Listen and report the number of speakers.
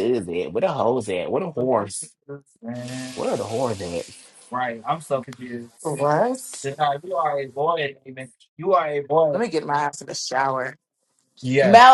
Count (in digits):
3